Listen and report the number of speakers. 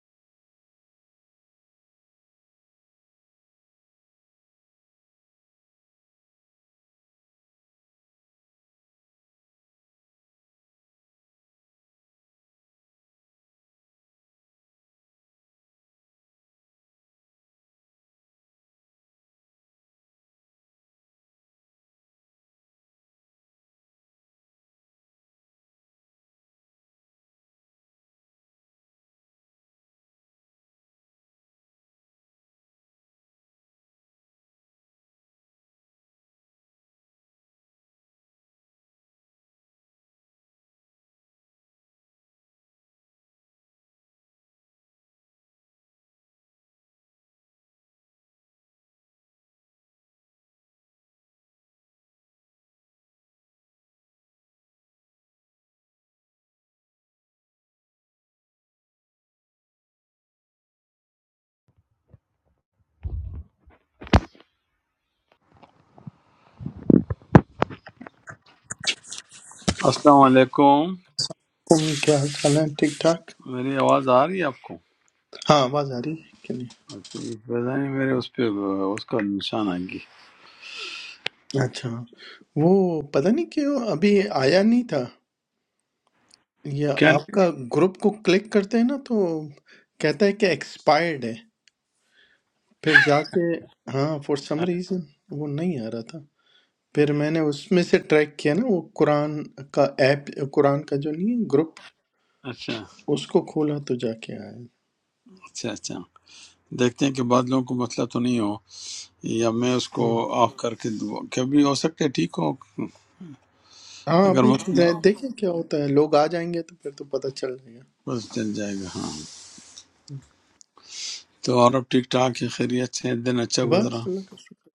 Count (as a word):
two